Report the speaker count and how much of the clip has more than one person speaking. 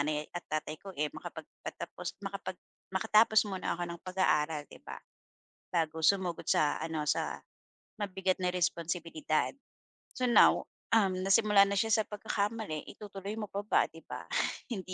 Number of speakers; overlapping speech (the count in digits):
1, no overlap